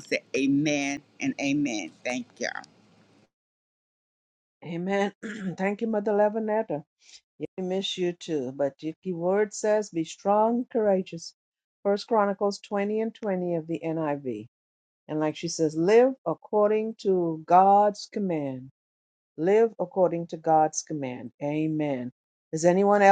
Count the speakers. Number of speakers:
two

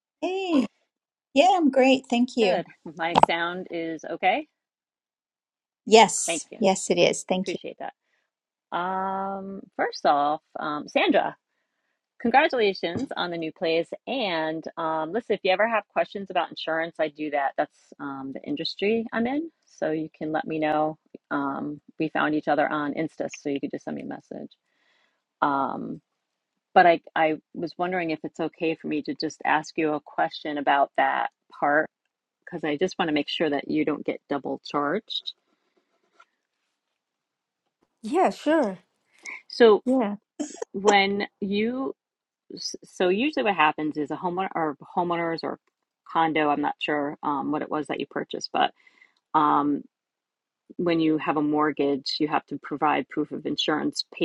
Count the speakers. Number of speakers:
three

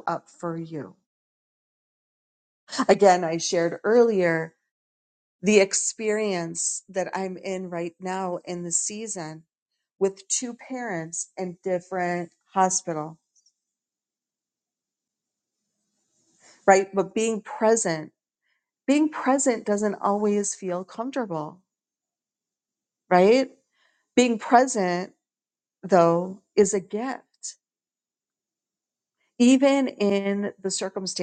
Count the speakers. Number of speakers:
one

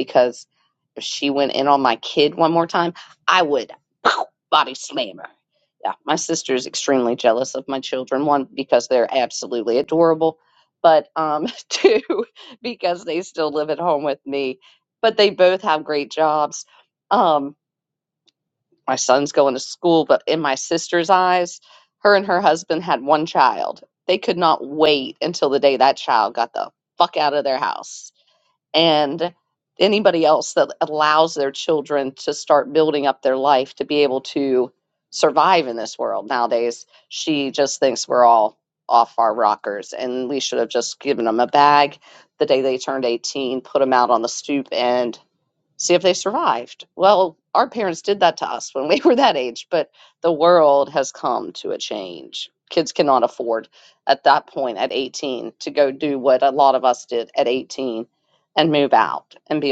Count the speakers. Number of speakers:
one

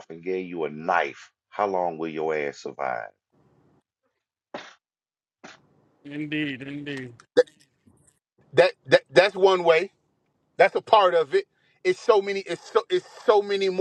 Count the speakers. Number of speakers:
three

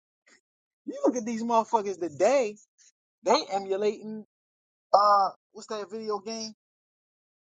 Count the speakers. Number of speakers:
one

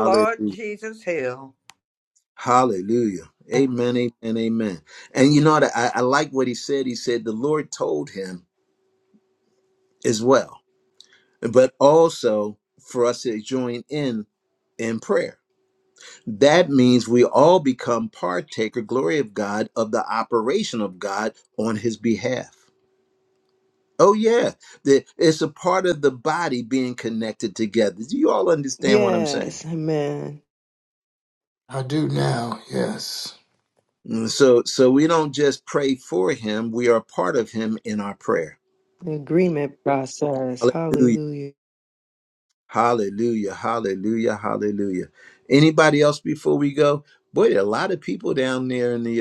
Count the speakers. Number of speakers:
four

